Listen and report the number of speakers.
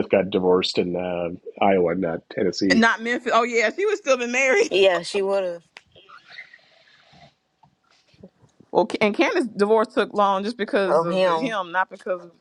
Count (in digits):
3